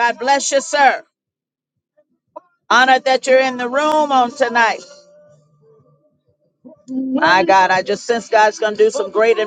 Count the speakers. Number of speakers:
one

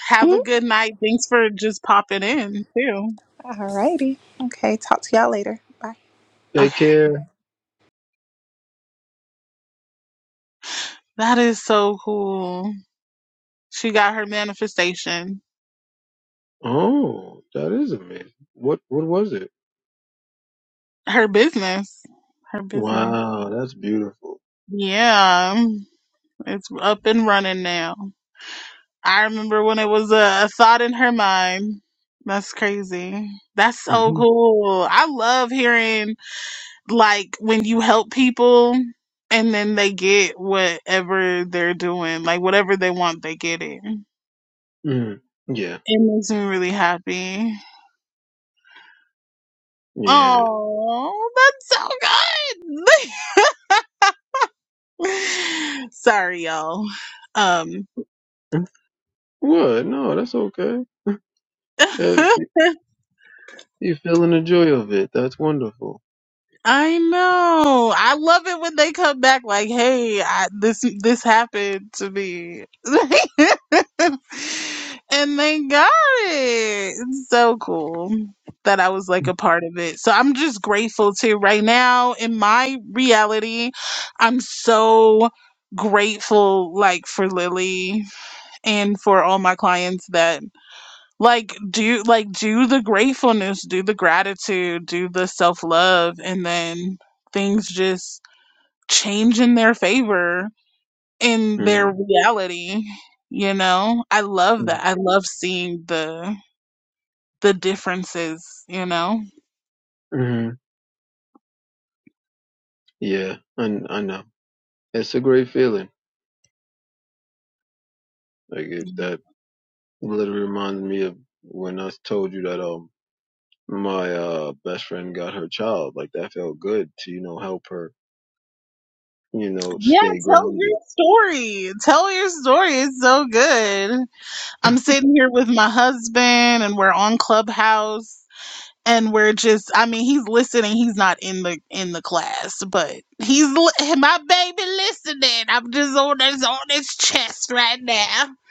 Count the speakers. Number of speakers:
three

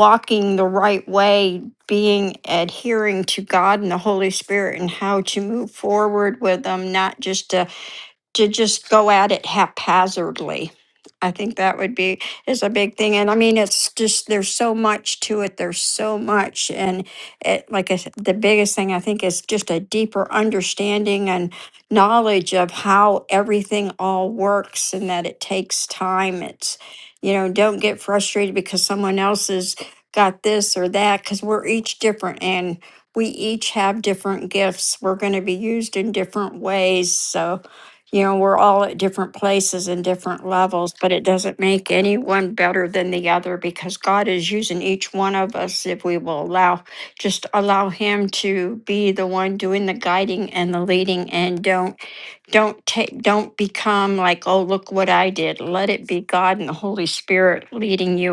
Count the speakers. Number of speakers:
one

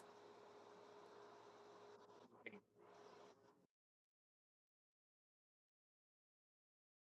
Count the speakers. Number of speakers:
zero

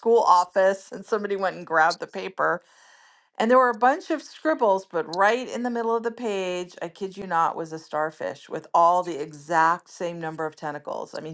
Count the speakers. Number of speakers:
one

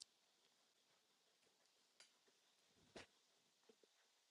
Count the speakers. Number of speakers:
zero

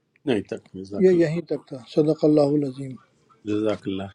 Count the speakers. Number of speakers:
two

